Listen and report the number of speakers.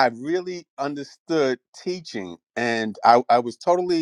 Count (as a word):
one